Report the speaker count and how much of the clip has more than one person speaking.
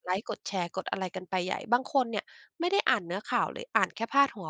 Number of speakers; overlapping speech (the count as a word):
one, no overlap